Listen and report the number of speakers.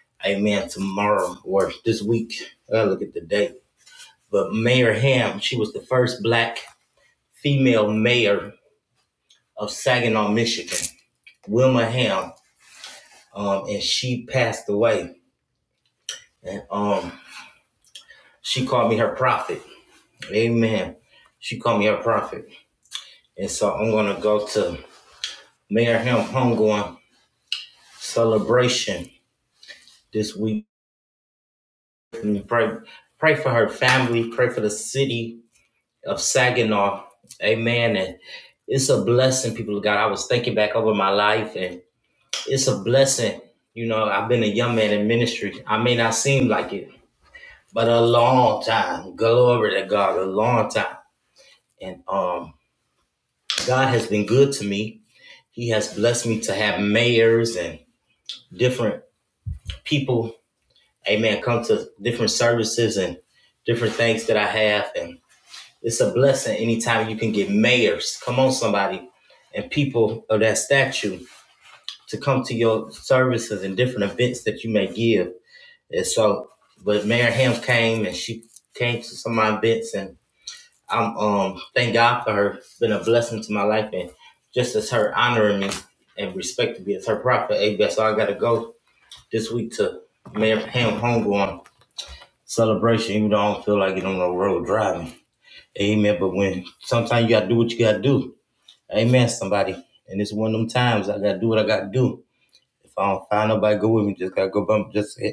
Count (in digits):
1